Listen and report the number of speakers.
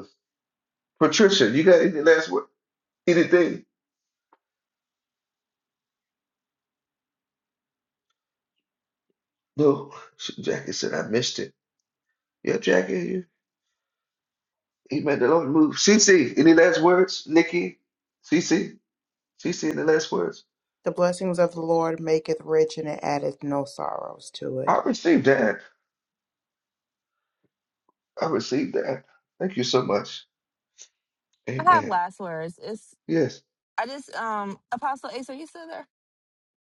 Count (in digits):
3